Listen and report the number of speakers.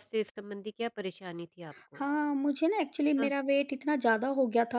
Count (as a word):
two